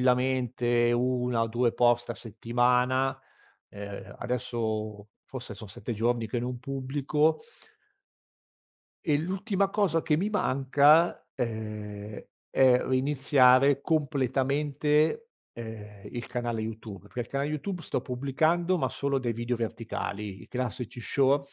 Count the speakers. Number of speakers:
1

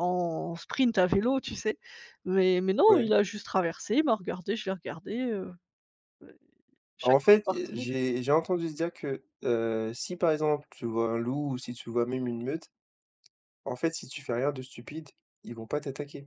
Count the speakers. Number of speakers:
2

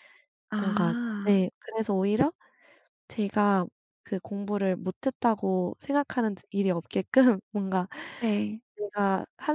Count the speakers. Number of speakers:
2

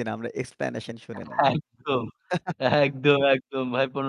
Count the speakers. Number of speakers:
2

